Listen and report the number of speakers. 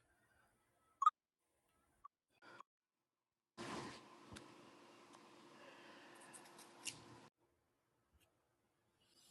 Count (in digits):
0